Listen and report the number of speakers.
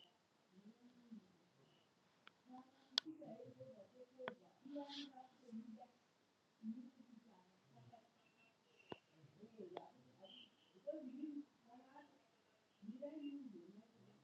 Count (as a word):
zero